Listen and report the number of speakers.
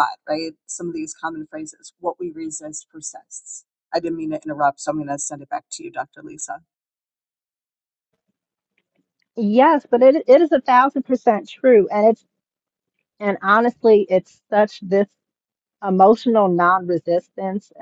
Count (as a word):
two